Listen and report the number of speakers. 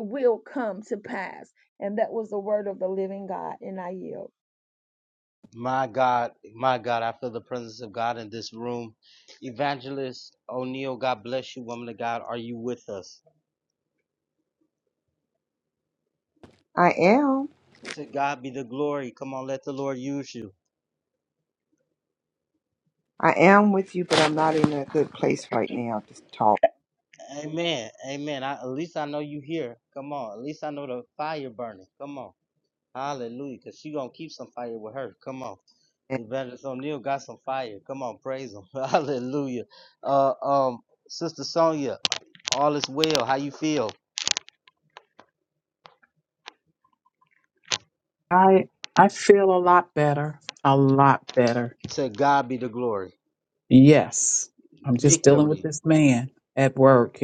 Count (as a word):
four